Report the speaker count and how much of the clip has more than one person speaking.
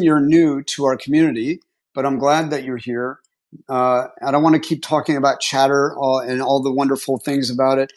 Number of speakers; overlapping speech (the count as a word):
one, no overlap